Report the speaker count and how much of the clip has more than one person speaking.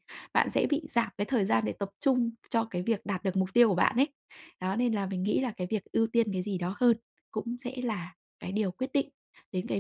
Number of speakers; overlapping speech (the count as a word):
one, no overlap